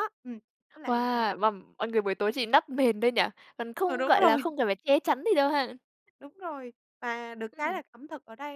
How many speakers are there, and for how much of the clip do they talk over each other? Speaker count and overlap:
two, about 15%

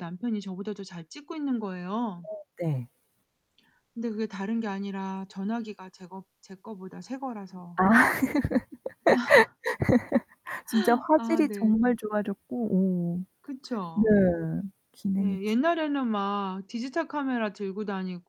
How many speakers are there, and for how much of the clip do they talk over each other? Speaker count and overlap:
two, about 5%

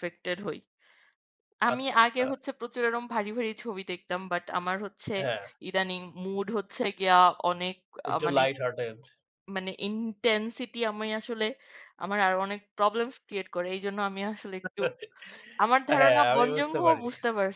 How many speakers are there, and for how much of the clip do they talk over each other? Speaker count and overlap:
two, about 12%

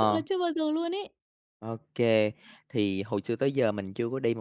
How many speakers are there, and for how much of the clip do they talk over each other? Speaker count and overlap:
two, about 5%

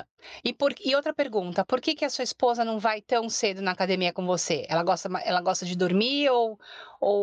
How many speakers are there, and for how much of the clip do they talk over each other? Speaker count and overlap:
one, no overlap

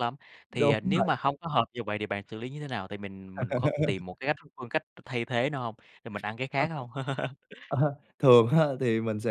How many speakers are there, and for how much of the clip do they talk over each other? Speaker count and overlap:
two, about 9%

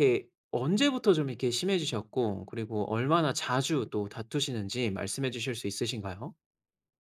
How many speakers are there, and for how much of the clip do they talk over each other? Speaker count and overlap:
one, no overlap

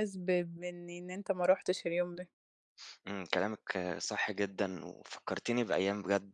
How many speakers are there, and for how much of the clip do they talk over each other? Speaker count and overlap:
two, no overlap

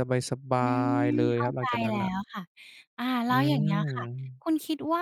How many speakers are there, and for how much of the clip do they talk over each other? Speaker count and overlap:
two, about 36%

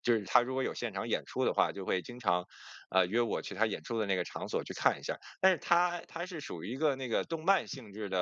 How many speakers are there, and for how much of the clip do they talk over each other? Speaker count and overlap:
one, no overlap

